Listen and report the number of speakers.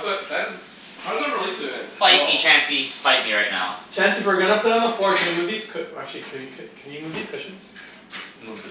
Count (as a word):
three